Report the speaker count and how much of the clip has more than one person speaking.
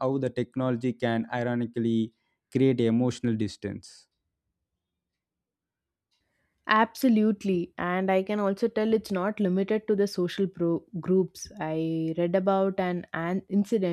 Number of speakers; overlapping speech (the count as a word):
two, no overlap